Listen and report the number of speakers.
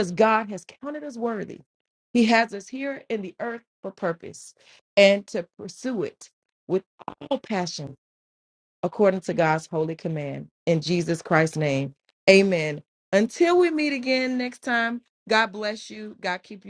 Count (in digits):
1